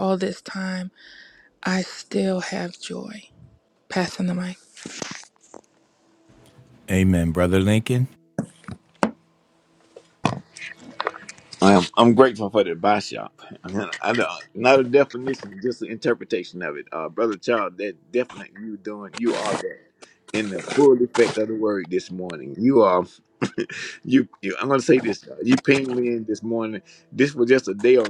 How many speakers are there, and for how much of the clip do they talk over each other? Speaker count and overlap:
3, no overlap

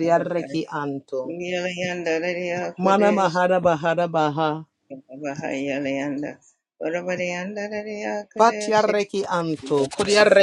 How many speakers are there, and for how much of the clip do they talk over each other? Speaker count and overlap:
2, about 16%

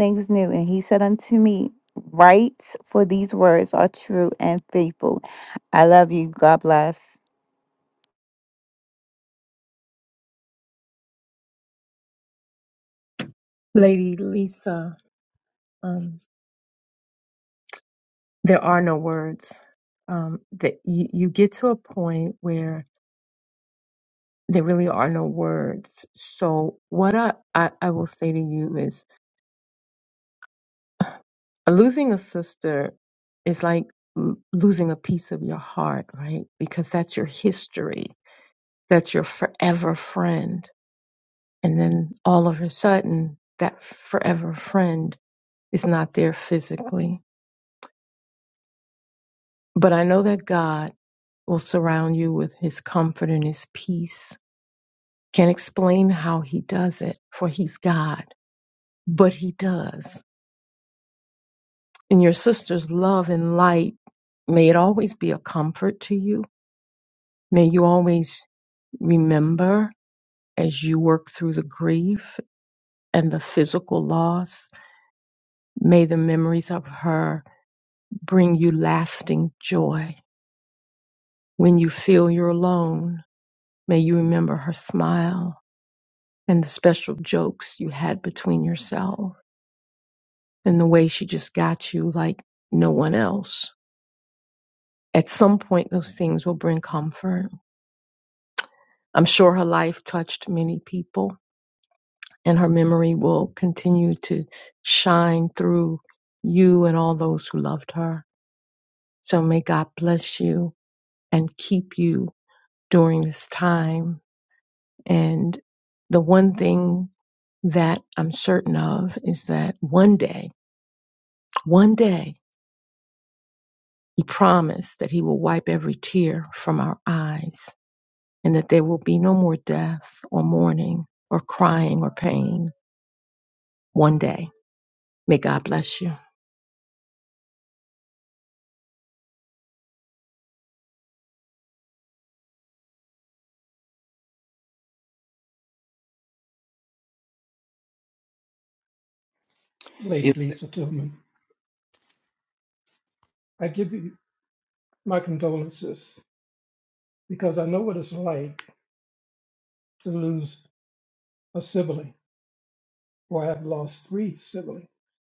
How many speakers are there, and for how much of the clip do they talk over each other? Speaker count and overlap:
3, no overlap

